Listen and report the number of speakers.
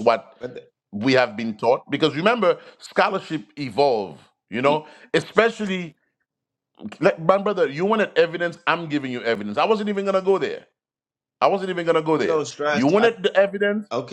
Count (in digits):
2